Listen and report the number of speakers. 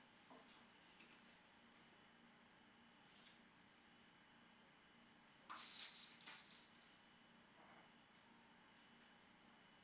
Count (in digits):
0